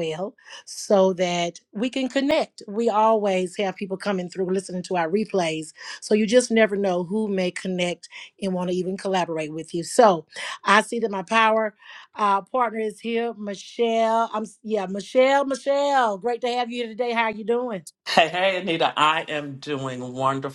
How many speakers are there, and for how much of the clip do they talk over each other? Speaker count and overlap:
2, no overlap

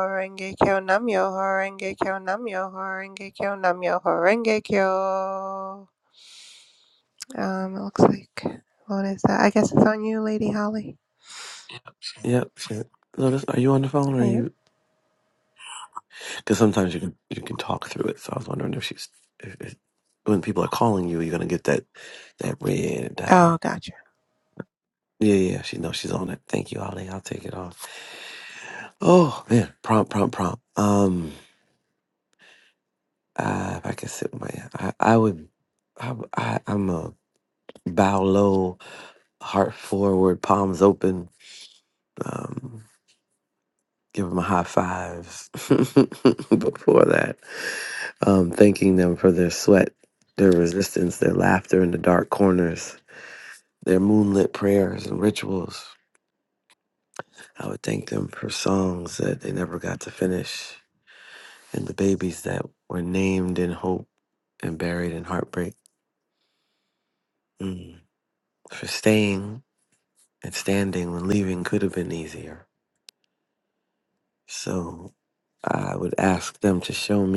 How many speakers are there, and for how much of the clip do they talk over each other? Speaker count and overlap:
2, about 1%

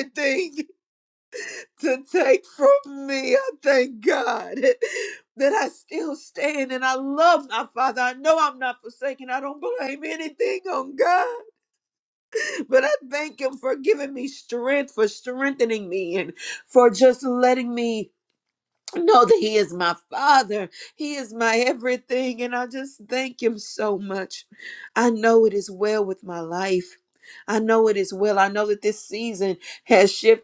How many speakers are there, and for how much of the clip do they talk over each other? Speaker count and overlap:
1, no overlap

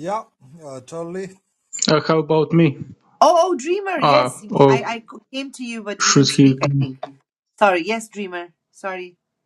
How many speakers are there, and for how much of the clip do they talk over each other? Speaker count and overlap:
3, about 15%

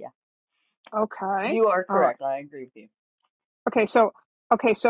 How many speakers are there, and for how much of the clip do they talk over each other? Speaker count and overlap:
2, about 14%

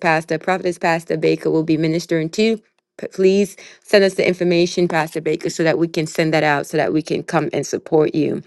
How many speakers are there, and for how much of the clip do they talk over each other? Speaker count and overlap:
1, no overlap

